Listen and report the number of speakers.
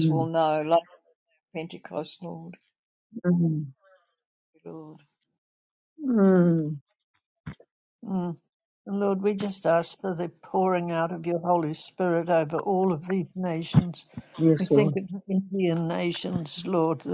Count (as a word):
three